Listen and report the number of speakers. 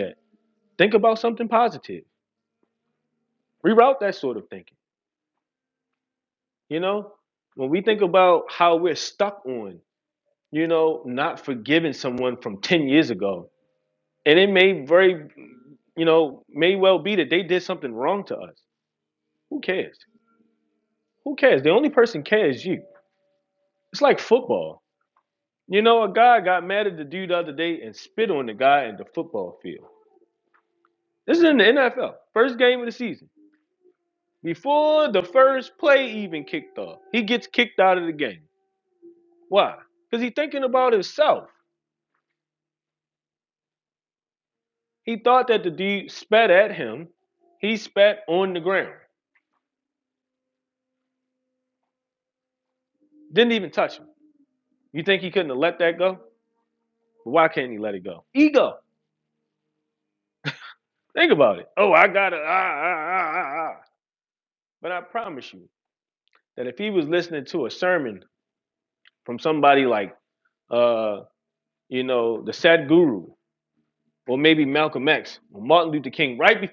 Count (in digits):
1